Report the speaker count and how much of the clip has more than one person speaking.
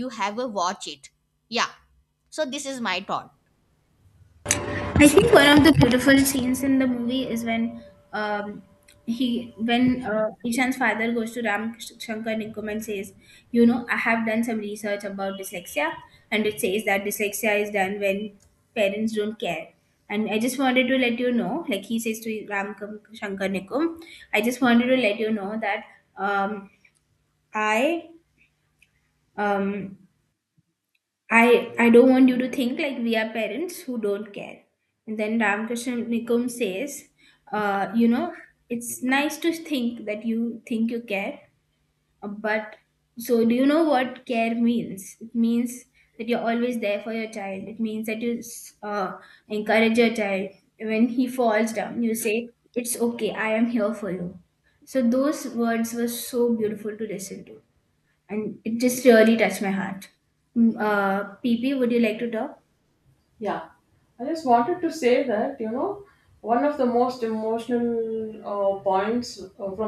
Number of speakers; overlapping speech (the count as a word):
three, no overlap